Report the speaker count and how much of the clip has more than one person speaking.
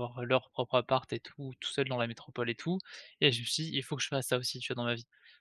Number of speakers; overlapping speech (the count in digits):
1, no overlap